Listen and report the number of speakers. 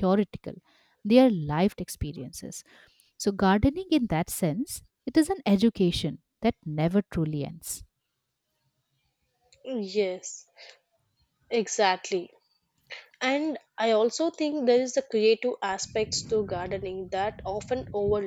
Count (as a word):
two